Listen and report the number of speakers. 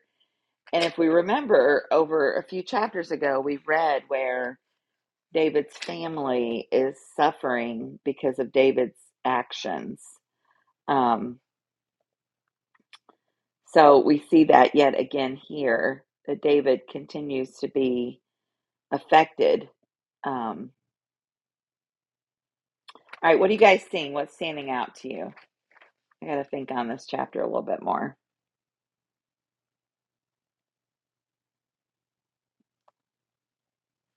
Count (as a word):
one